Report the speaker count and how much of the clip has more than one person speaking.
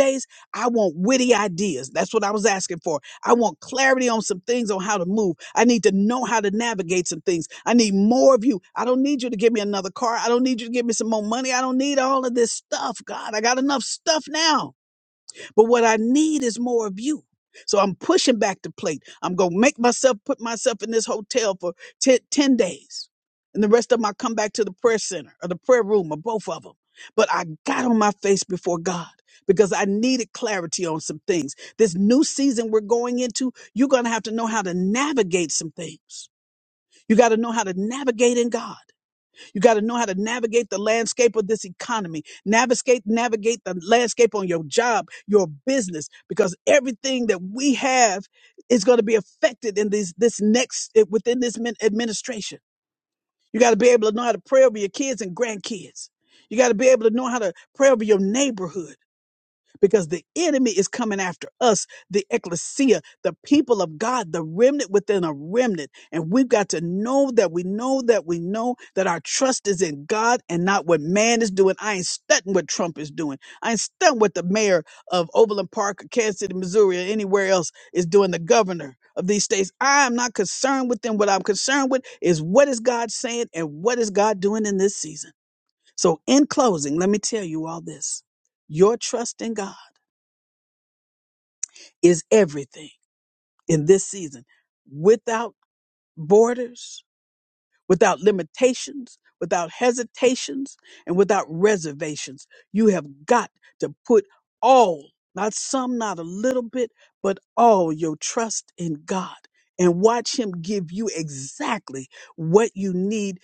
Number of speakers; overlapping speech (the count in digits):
1, no overlap